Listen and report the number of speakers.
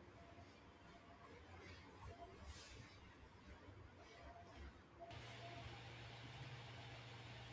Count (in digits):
0